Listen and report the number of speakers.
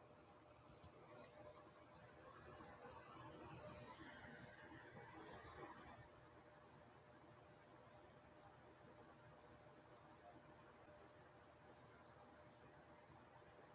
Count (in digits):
0